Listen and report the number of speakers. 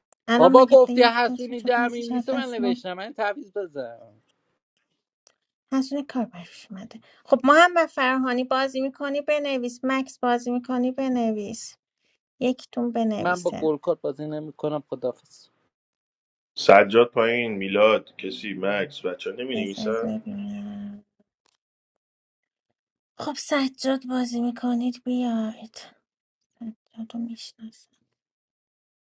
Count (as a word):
three